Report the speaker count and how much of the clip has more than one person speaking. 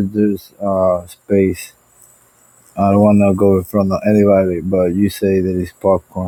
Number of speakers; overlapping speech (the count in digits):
1, no overlap